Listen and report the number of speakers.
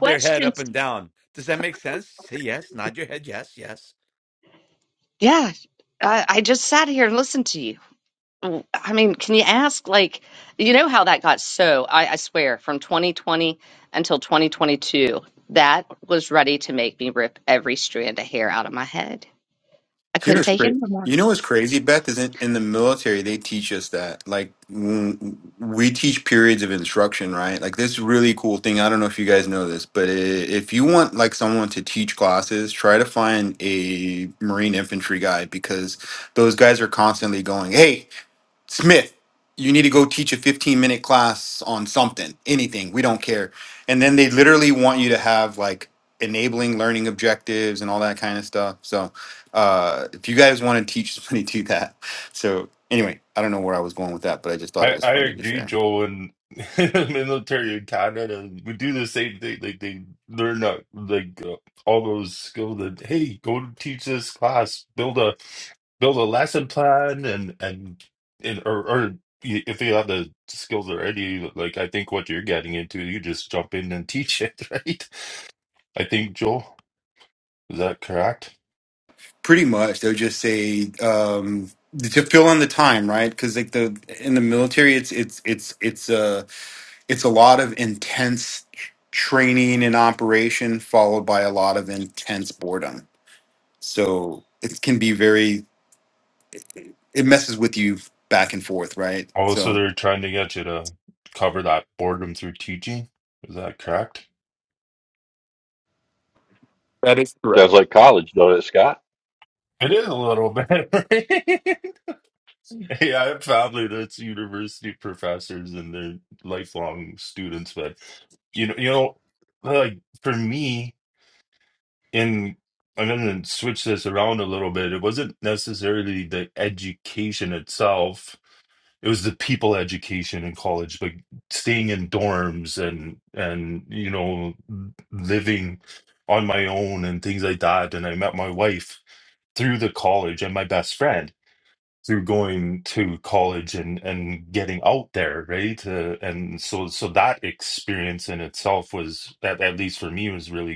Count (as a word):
five